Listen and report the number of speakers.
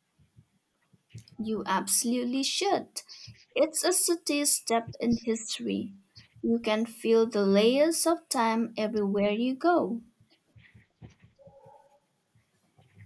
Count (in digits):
1